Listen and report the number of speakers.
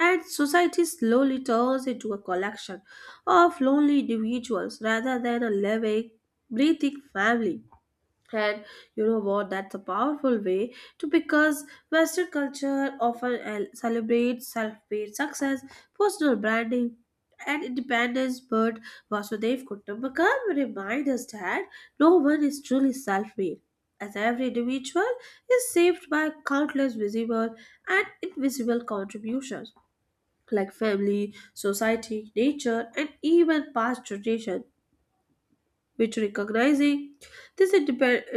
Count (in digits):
1